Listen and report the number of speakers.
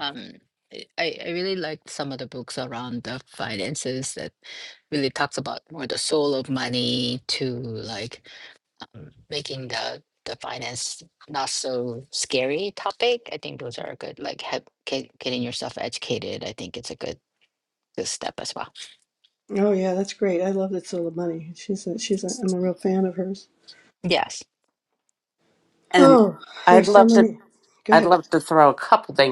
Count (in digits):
3